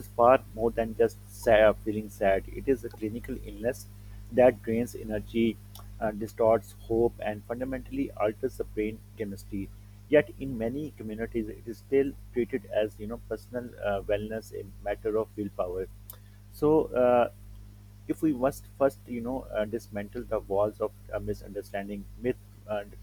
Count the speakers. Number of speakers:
1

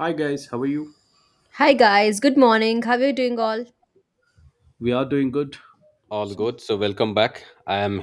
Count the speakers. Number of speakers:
3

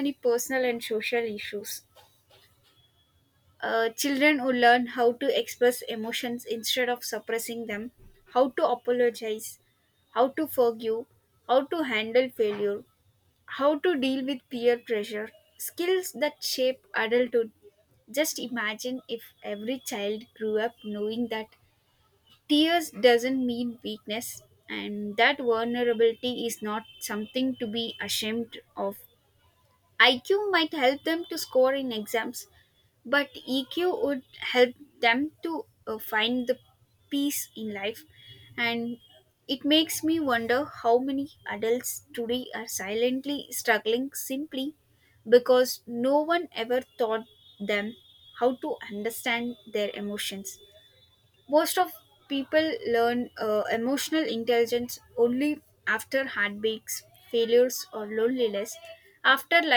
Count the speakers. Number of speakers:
1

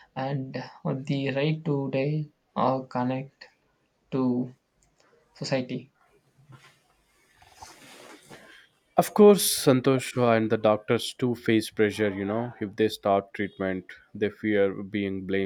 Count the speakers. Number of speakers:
2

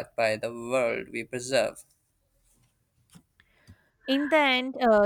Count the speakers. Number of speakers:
2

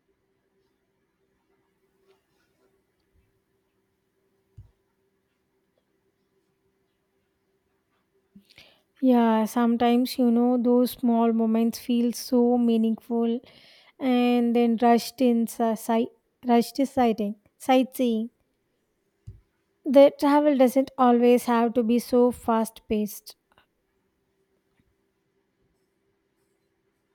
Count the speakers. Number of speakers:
1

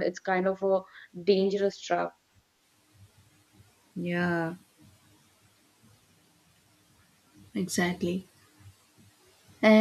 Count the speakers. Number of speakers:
2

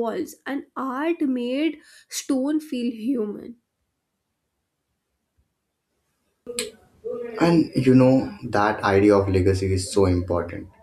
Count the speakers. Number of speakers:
2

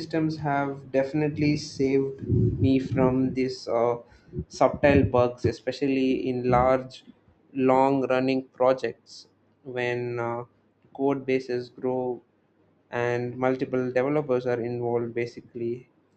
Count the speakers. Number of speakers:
1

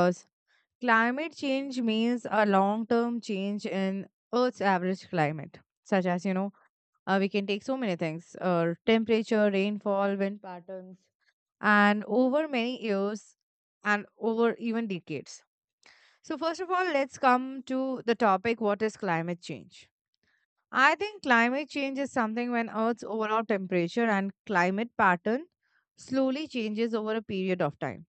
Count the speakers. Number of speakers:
1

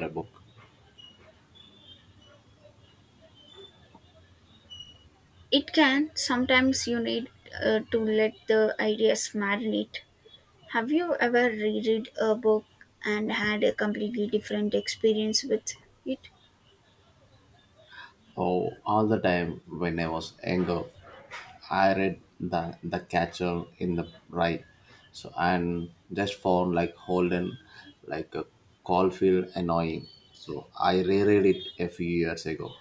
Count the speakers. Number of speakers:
2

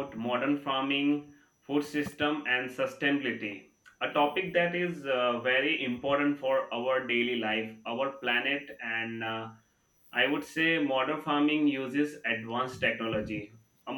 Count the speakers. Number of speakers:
1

